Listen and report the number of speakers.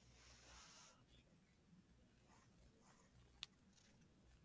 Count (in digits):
0